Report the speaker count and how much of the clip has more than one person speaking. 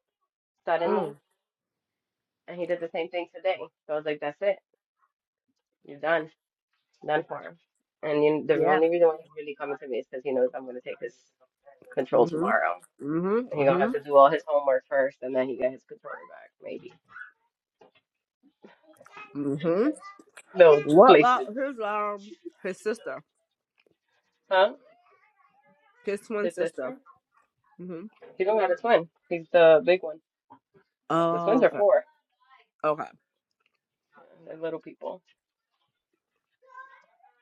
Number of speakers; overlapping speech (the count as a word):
two, about 7%